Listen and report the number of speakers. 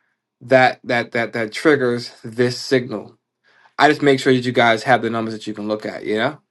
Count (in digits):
1